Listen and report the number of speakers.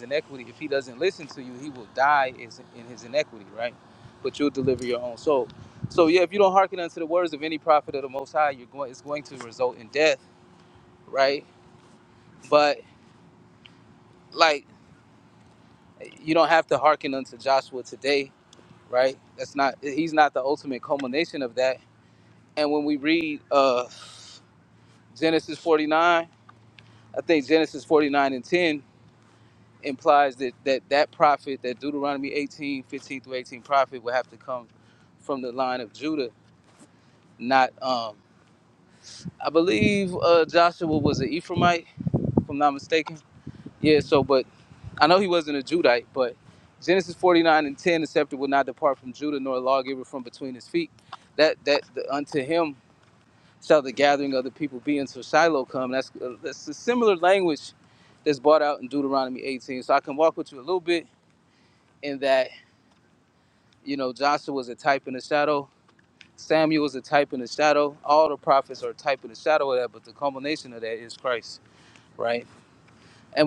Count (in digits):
1